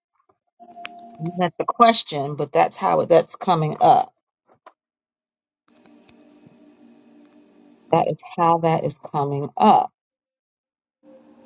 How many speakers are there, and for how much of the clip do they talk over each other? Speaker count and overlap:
1, no overlap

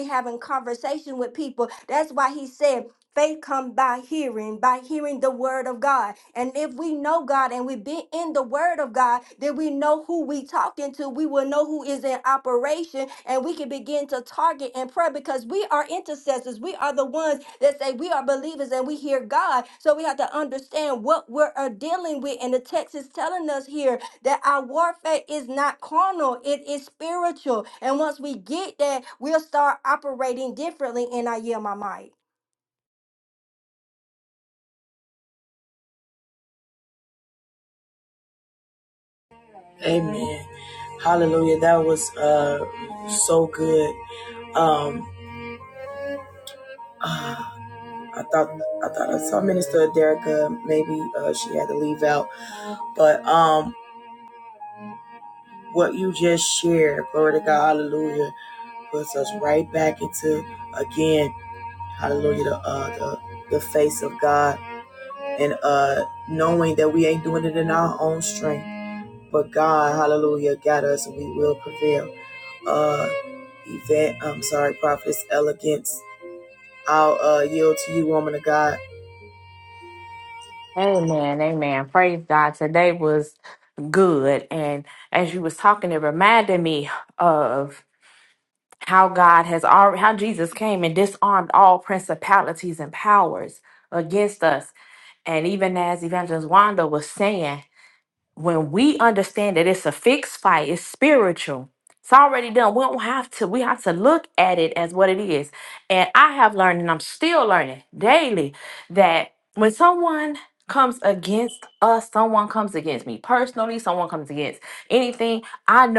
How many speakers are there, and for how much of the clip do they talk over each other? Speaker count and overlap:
3, no overlap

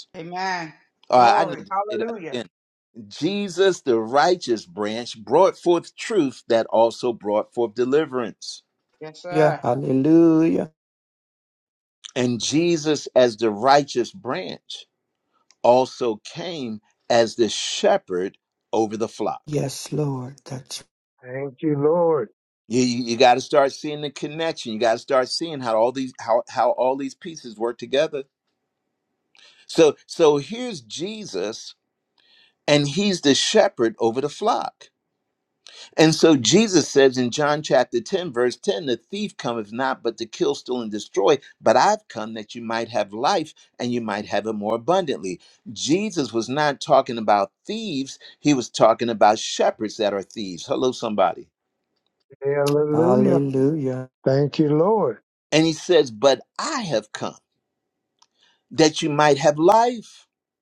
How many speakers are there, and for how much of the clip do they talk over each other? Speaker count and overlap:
4, about 3%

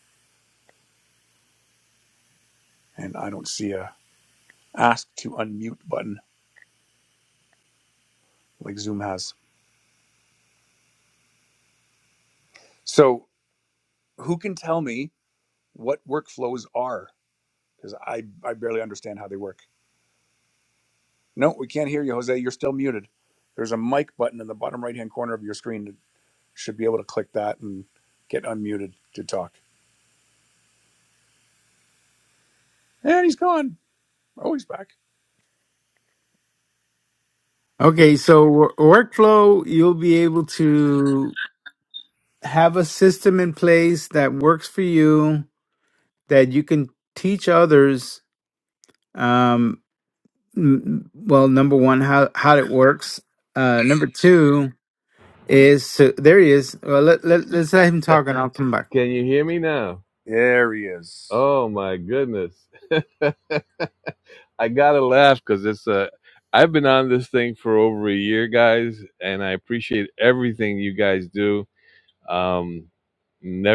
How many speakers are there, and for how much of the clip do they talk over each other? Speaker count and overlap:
3, under 1%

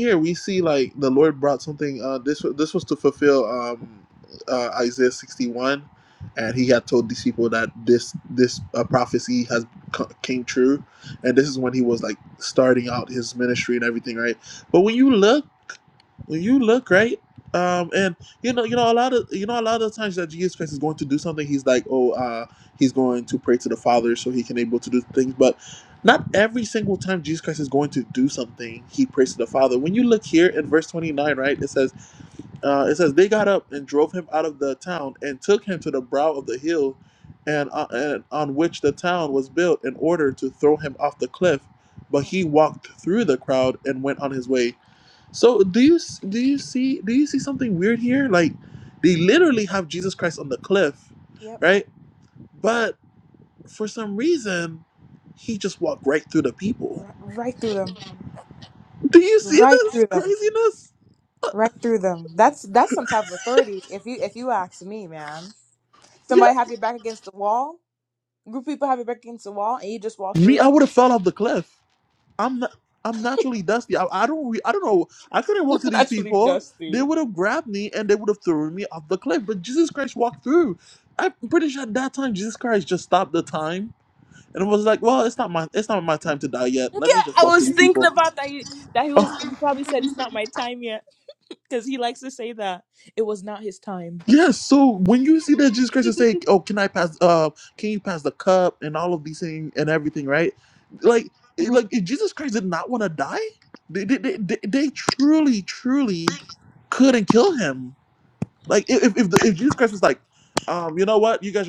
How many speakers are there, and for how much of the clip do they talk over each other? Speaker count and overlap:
2, about 4%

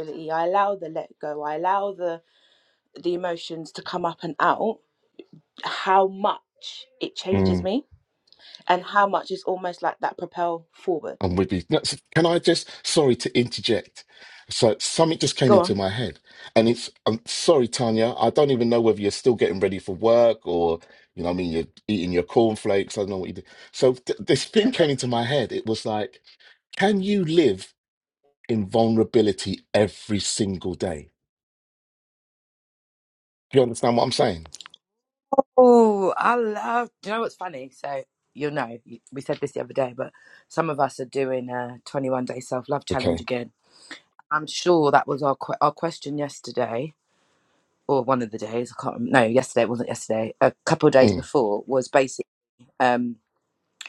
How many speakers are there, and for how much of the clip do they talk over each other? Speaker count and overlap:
3, about 2%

